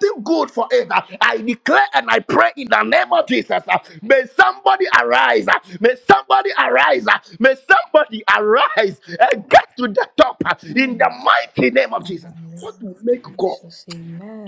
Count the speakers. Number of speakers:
2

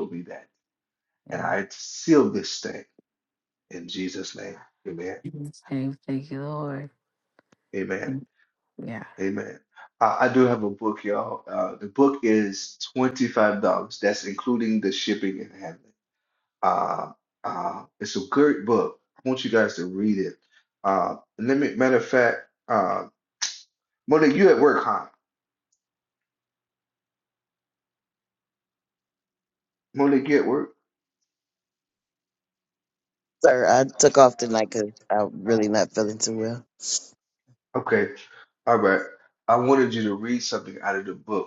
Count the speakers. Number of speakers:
3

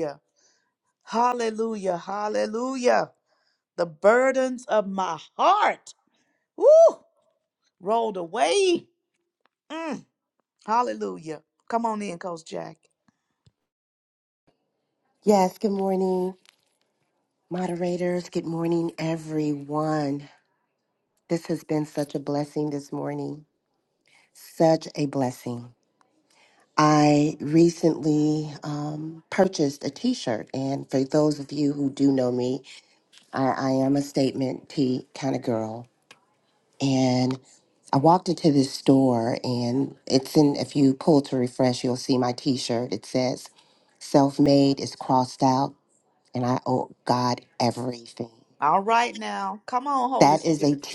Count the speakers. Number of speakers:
2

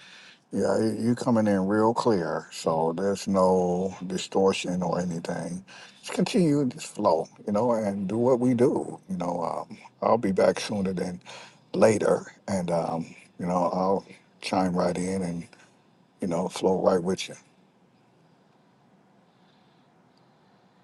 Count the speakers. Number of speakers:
1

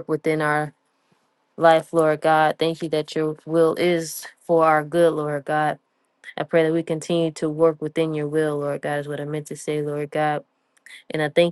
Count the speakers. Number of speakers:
1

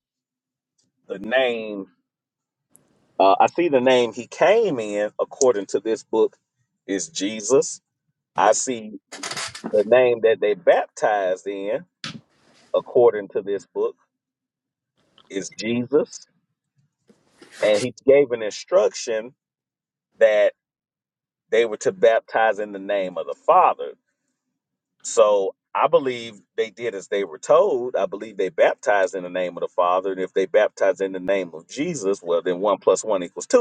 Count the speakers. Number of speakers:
1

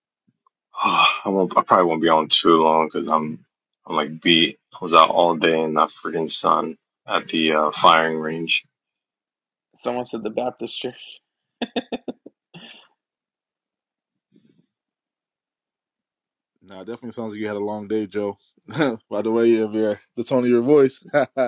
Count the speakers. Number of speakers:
3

